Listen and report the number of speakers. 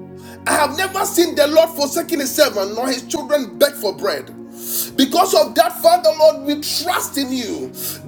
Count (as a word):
one